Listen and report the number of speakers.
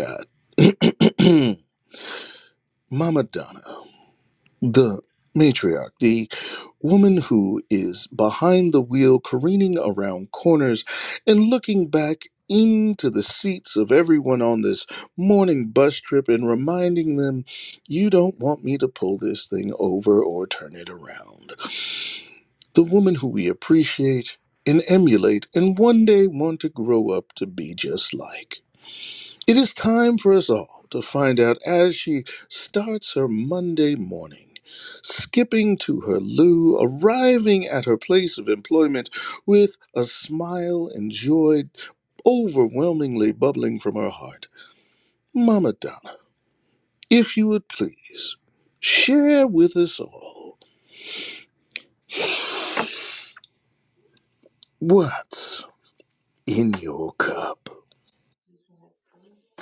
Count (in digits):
1